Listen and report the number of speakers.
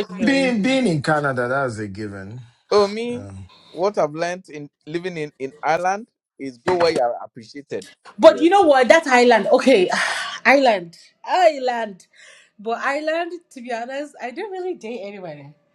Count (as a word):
three